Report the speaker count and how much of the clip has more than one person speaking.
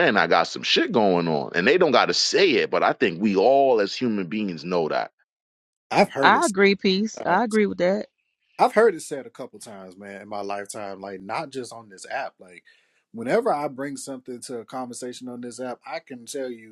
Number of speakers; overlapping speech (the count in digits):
3, about 2%